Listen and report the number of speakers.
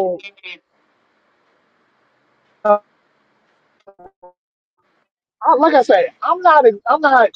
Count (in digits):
1